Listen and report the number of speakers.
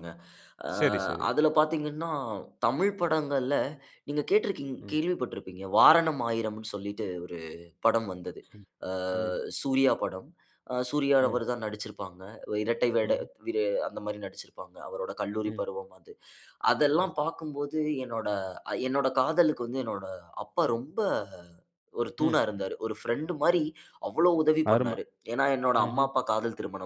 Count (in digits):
2